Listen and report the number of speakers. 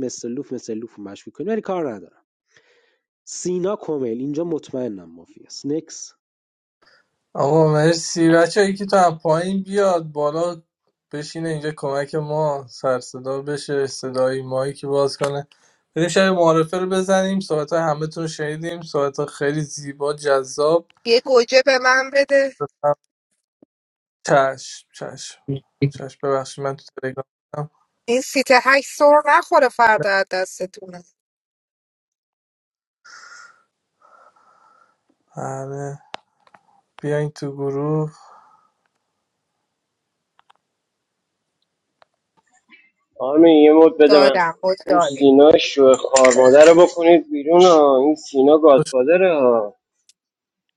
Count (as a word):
four